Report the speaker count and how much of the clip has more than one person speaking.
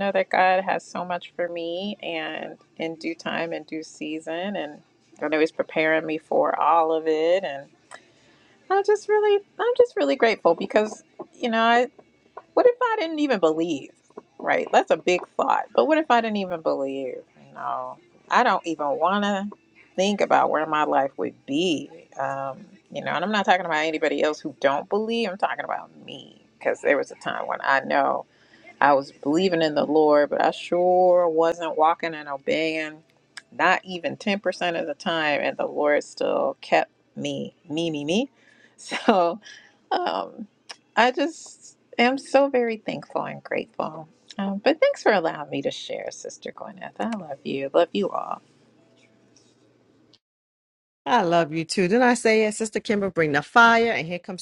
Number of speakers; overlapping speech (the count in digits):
2, no overlap